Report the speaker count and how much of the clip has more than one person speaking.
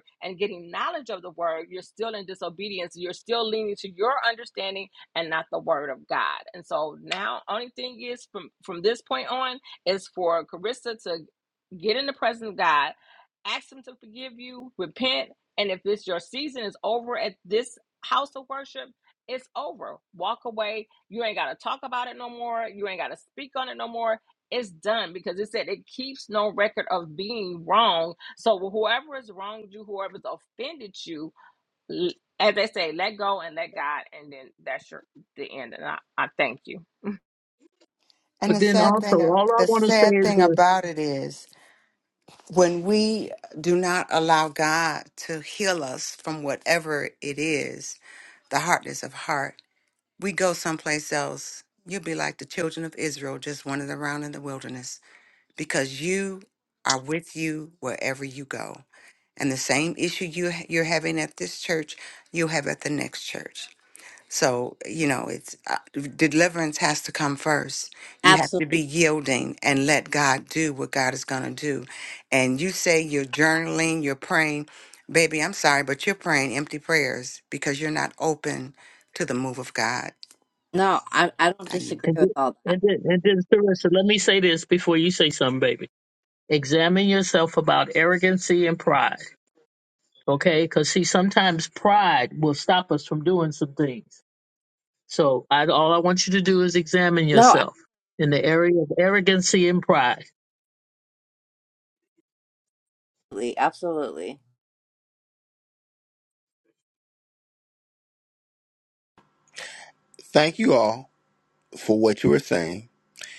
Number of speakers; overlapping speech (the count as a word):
five, about 3%